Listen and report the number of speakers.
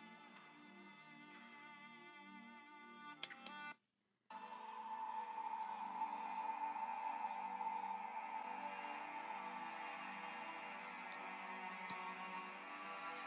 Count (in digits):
0